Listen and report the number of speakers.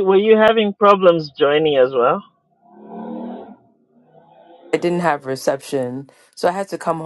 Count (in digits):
2